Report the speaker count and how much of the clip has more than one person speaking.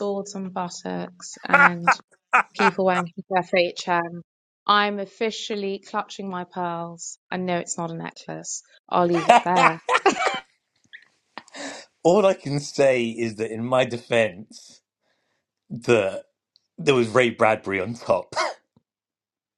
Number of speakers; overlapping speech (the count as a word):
two, no overlap